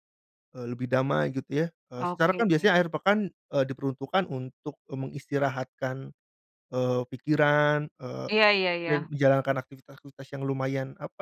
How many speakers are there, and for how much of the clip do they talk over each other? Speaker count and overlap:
two, about 6%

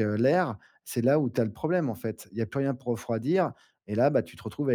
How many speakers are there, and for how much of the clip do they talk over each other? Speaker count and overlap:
one, no overlap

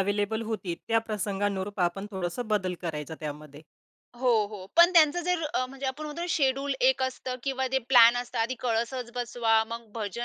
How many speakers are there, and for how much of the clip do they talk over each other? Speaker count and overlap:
two, no overlap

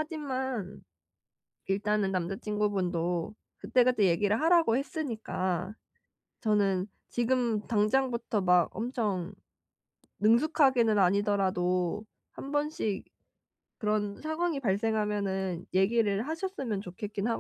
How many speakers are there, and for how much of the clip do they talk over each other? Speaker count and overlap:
one, no overlap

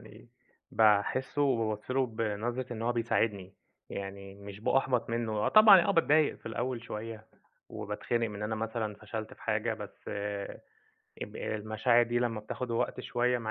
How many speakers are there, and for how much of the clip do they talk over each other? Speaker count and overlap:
one, no overlap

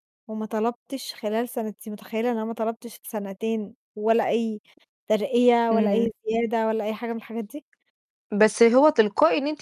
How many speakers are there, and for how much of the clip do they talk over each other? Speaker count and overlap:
two, about 4%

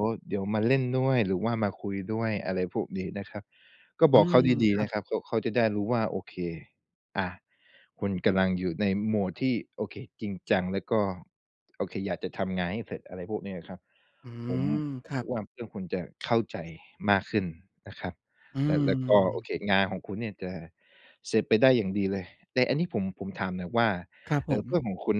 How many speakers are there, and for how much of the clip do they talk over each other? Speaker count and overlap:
two, about 5%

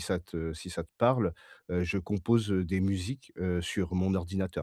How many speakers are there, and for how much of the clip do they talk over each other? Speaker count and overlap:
one, no overlap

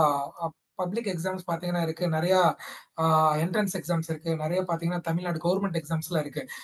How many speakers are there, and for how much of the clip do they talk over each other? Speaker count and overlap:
one, no overlap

